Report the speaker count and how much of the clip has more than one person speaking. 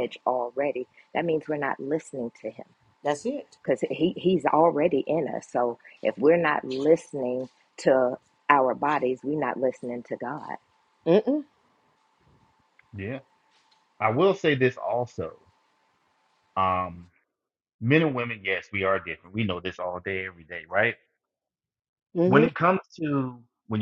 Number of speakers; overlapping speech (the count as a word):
three, about 1%